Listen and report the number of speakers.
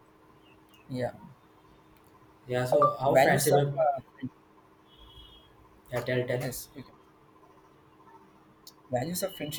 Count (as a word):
two